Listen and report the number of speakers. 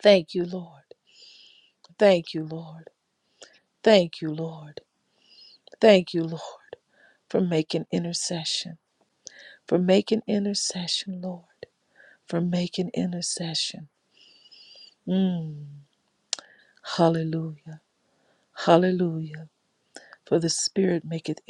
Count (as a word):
one